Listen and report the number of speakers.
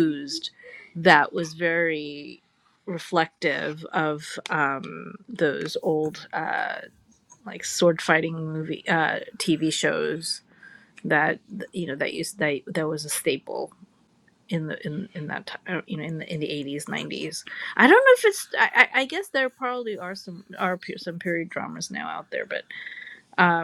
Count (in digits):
1